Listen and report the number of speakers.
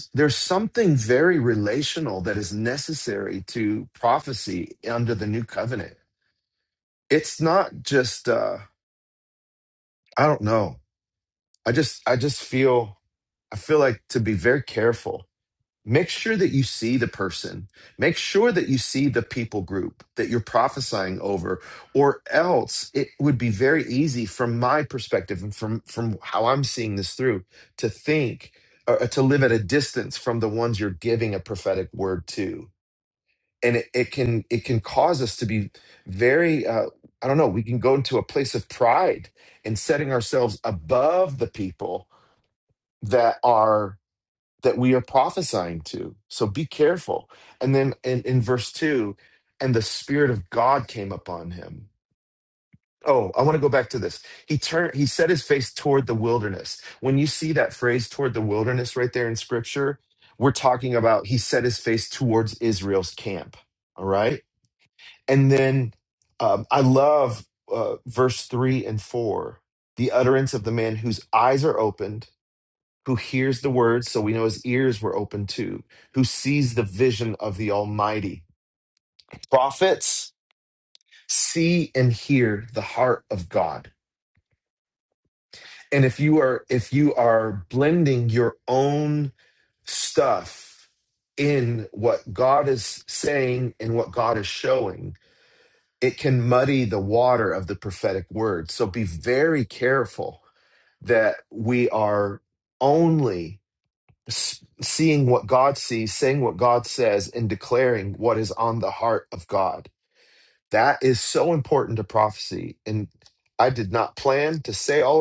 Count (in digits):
1